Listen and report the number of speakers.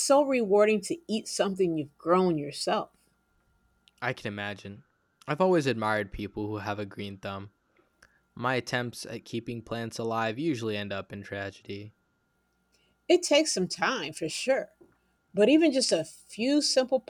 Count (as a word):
two